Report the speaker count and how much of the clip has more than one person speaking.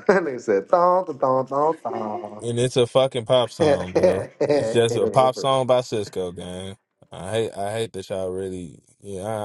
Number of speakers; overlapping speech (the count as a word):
two, about 1%